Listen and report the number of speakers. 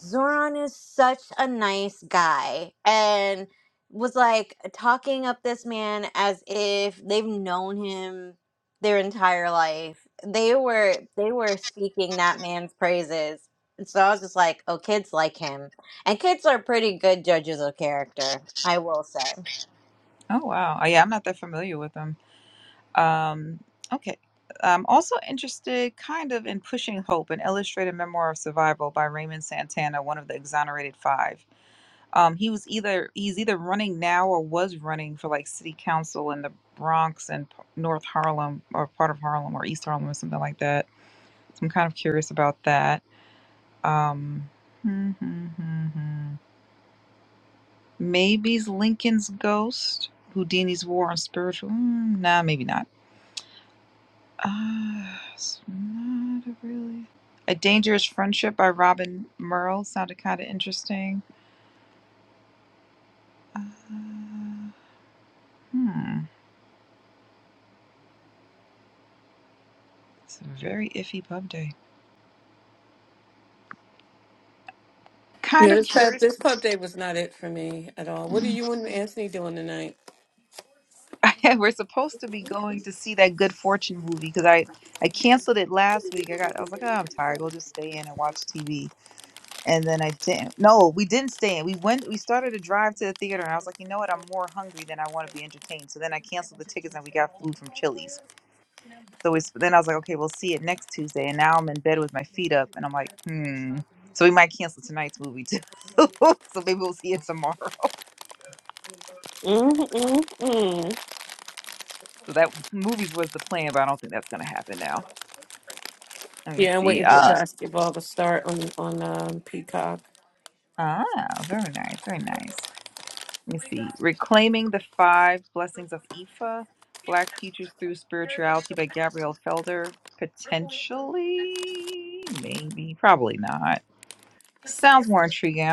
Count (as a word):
three